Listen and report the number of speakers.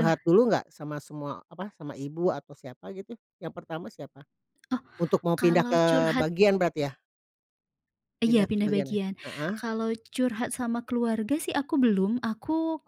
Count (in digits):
2